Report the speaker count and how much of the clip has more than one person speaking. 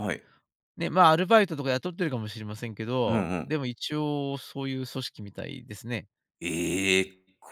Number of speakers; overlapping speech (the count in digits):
2, about 6%